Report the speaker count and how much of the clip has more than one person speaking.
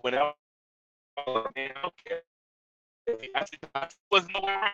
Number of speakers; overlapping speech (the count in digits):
1, no overlap